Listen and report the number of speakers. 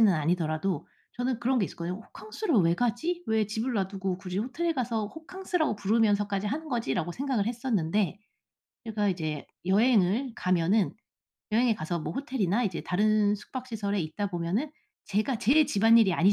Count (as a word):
one